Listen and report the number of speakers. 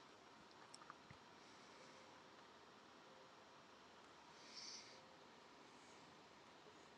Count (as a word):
zero